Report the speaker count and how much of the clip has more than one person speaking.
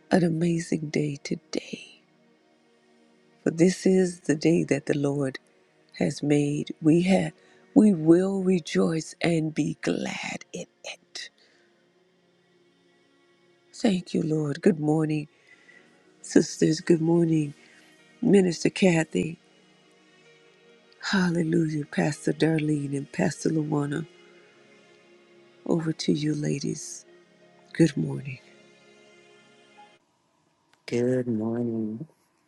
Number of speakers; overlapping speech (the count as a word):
two, no overlap